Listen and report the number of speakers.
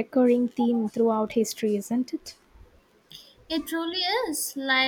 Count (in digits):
2